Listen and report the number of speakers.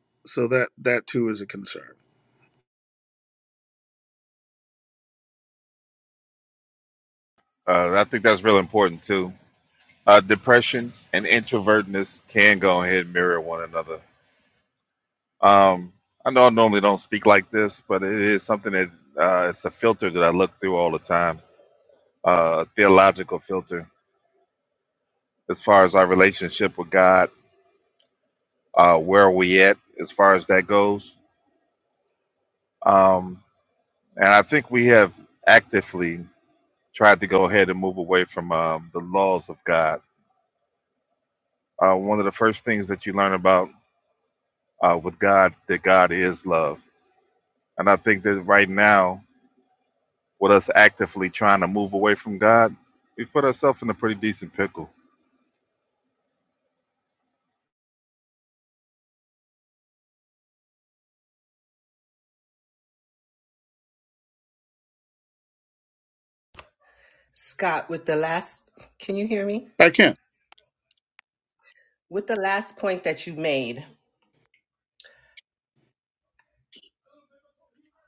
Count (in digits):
3